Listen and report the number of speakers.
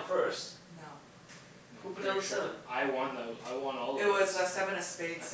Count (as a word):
three